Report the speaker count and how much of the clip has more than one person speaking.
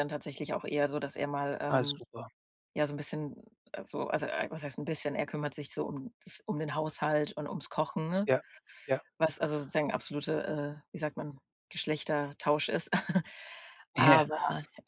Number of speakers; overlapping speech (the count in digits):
2, about 4%